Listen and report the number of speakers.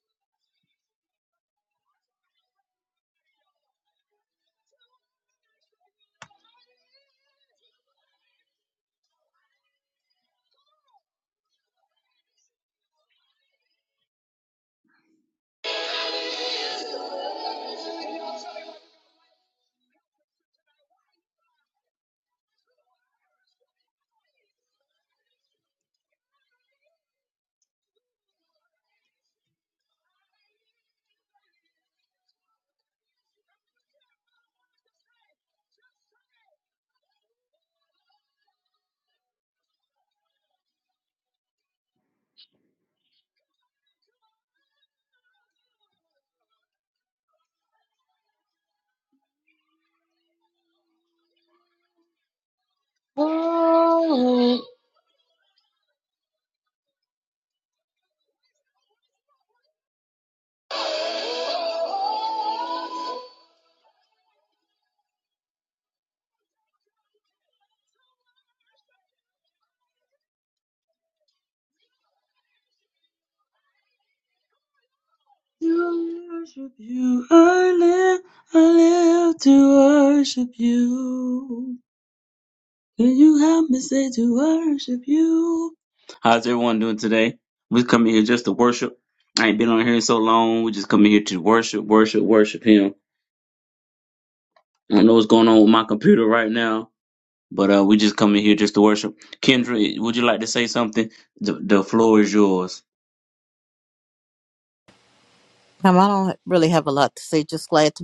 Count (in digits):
2